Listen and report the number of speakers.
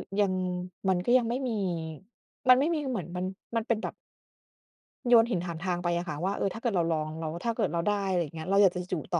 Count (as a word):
one